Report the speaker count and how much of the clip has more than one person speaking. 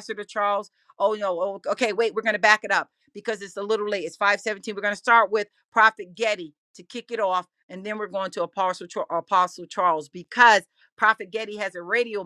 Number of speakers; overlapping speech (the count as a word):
one, no overlap